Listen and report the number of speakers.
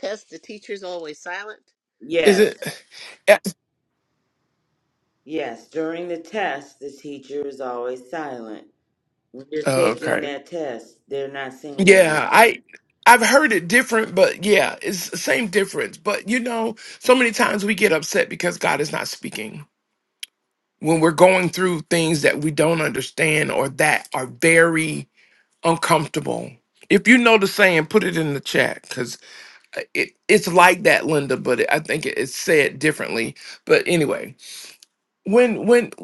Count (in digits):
3